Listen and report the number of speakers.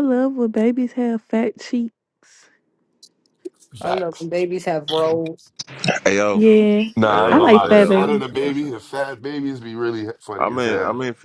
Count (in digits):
4